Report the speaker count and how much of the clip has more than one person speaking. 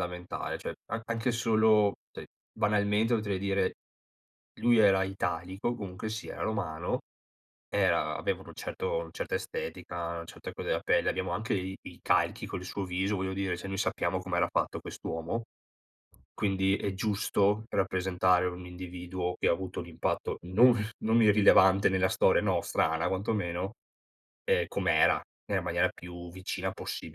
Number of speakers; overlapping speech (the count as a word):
one, no overlap